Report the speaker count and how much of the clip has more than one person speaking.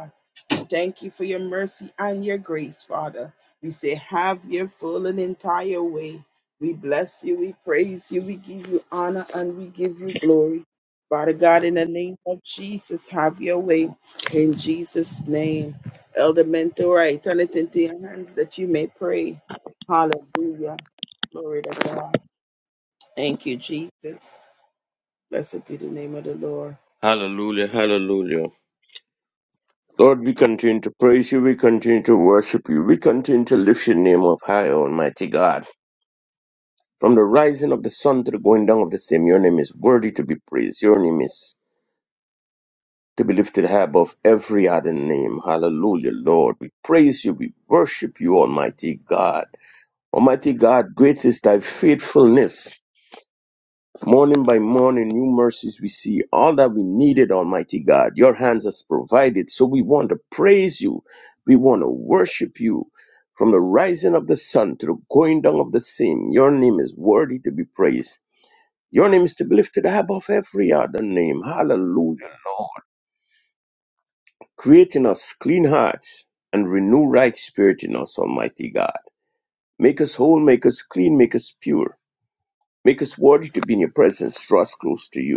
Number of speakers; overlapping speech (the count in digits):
2, no overlap